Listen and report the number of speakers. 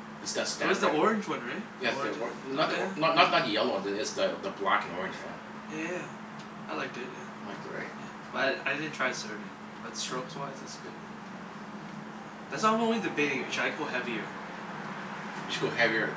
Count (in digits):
2